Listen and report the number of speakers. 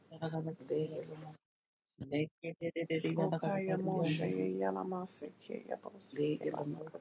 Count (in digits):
3